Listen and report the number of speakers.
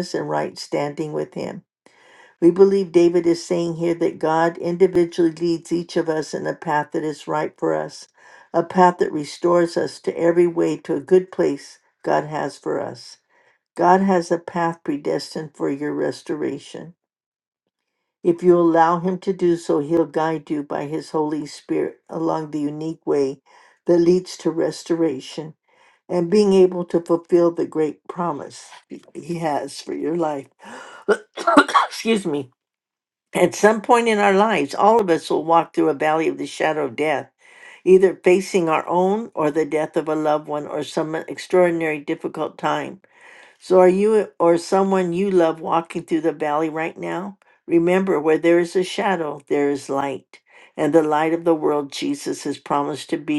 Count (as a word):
one